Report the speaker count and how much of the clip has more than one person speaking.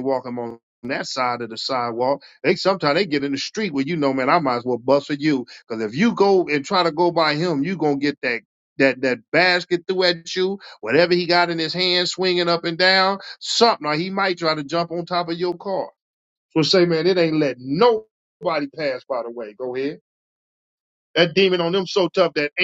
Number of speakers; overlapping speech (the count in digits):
1, no overlap